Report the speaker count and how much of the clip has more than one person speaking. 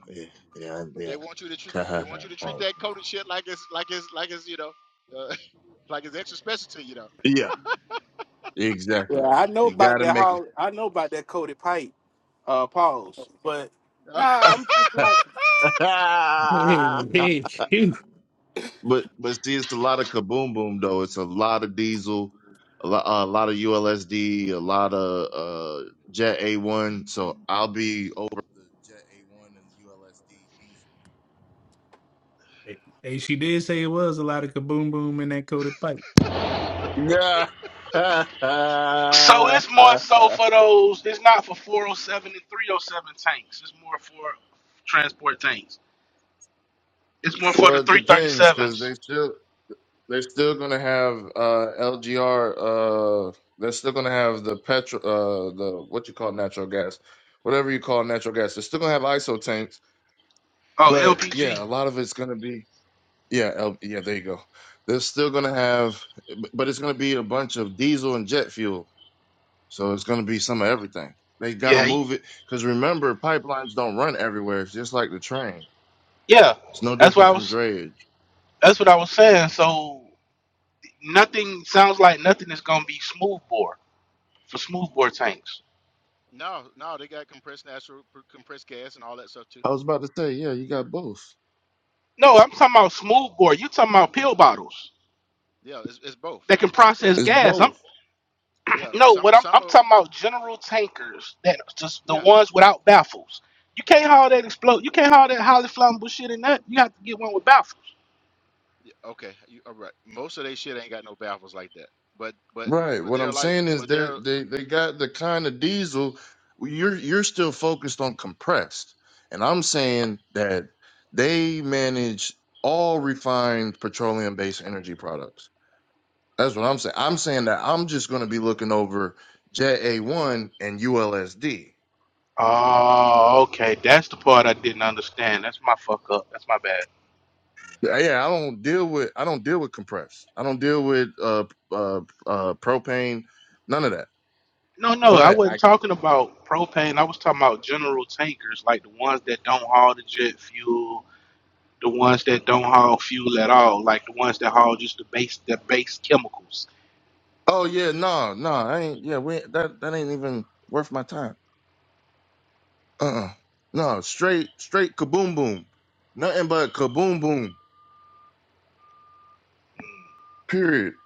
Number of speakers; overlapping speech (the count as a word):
four, about 5%